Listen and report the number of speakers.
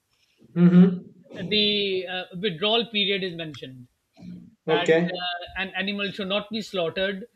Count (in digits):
2